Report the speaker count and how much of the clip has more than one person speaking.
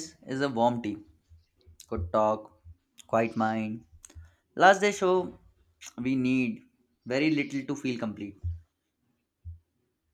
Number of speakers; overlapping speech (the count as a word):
one, no overlap